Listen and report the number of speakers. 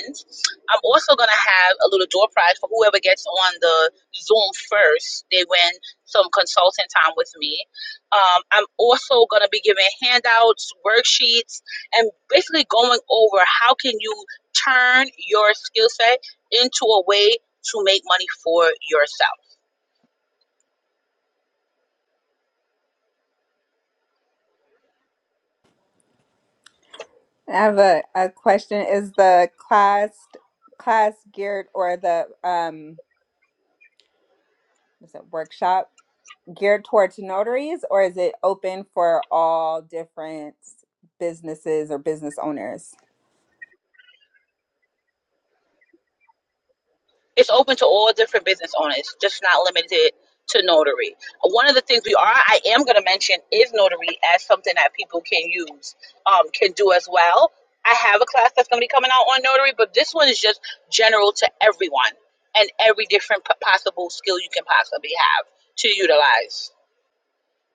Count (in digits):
2